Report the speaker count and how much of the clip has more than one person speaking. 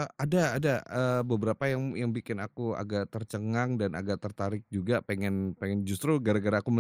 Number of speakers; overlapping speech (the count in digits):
1, no overlap